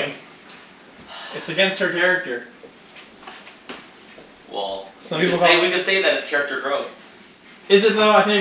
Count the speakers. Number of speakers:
2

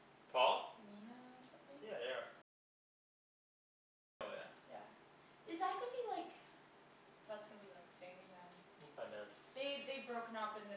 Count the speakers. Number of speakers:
2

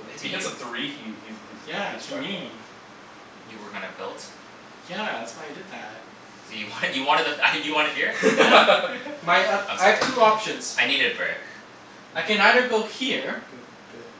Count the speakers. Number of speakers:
4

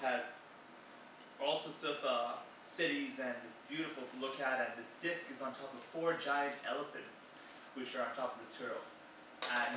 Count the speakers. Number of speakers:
1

